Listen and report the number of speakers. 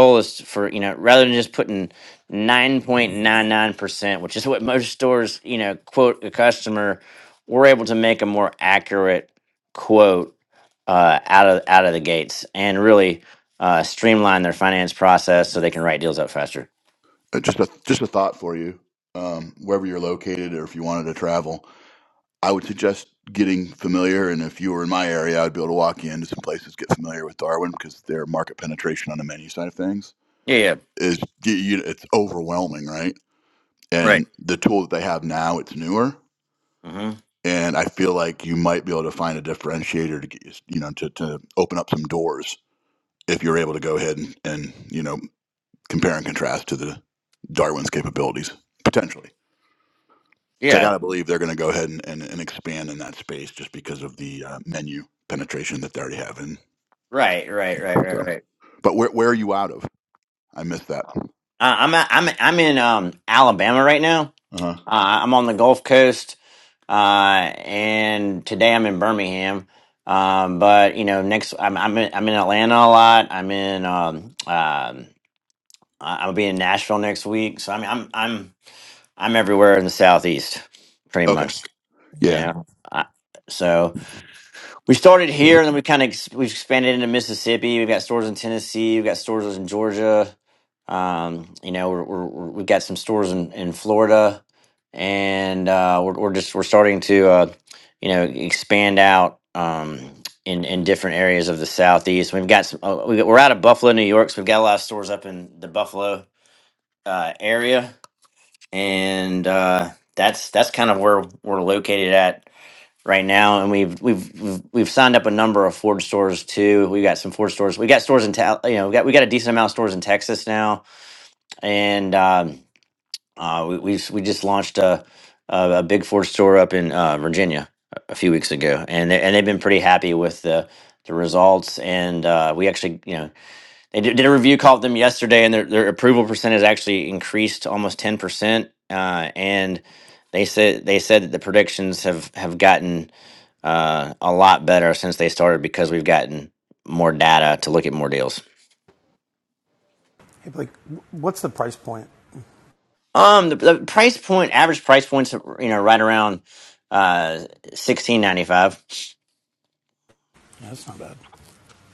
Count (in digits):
3